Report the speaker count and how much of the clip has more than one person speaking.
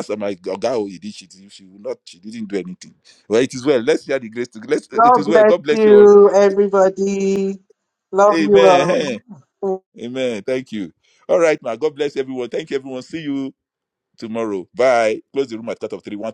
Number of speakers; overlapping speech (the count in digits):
2, about 12%